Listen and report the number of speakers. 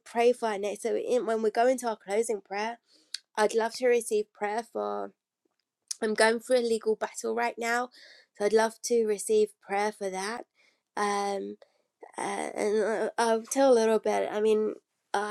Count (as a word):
one